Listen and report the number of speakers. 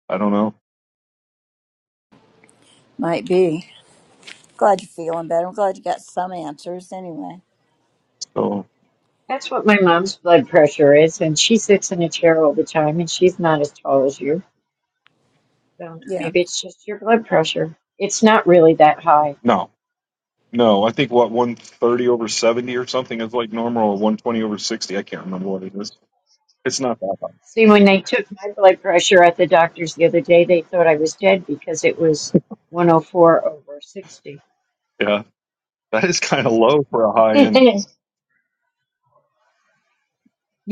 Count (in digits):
3